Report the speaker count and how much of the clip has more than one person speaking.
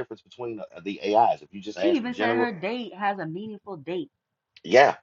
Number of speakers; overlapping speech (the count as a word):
two, about 15%